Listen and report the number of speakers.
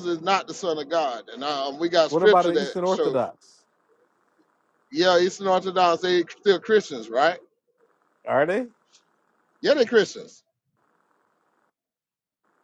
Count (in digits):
2